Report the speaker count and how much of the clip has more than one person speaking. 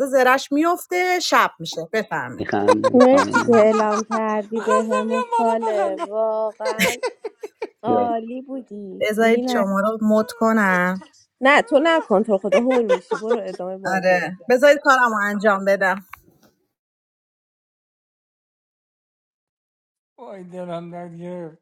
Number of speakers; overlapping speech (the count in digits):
4, about 18%